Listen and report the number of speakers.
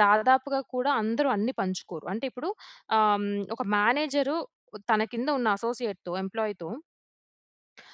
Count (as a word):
one